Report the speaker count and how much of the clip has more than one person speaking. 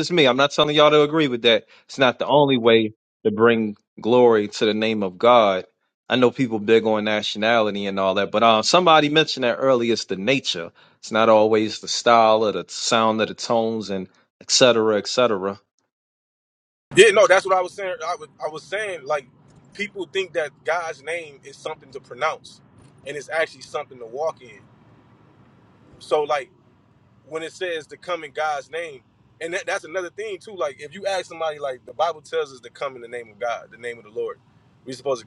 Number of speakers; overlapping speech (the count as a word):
two, no overlap